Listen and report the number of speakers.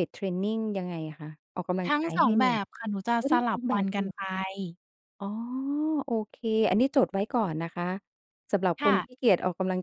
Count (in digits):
2